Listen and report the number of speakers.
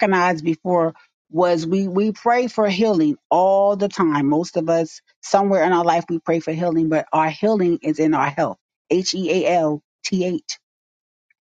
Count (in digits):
1